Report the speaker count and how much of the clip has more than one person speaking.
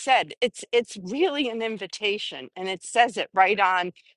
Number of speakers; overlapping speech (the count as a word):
one, no overlap